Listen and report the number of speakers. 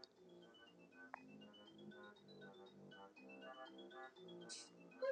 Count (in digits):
0